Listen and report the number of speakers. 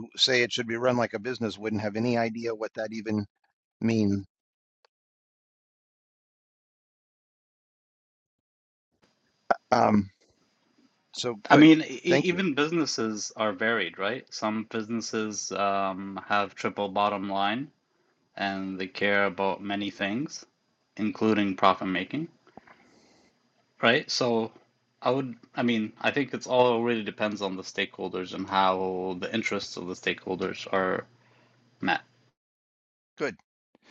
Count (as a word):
two